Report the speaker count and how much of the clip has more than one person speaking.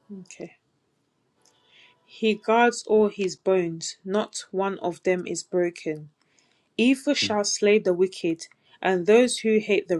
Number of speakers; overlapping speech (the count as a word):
one, no overlap